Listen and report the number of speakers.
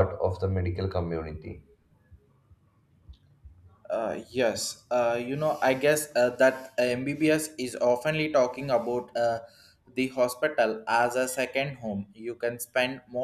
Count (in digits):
2